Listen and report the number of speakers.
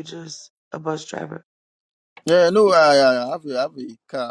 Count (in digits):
2